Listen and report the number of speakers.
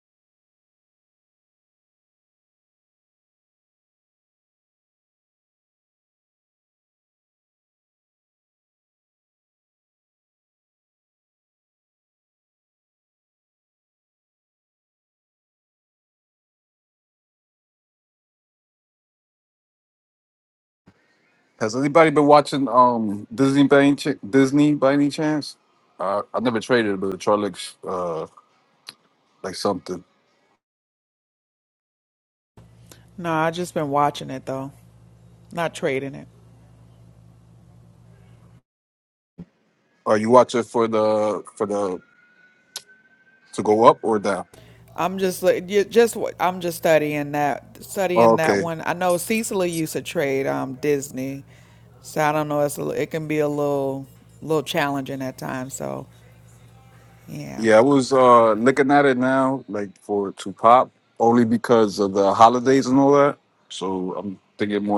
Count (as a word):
two